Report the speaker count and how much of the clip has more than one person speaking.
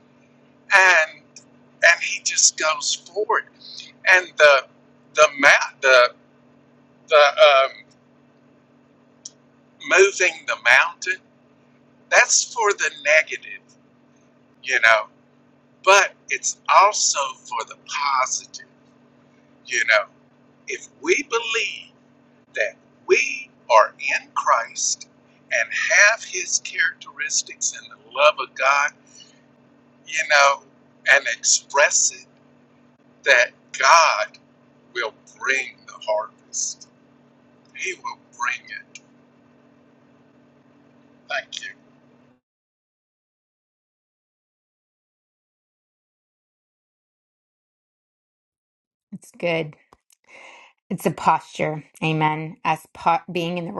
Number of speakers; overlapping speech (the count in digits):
2, no overlap